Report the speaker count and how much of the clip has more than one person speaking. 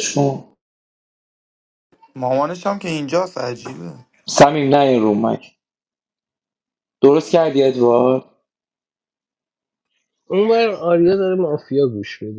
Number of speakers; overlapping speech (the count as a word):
three, no overlap